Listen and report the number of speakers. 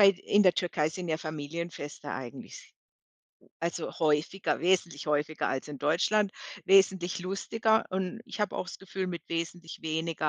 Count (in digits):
1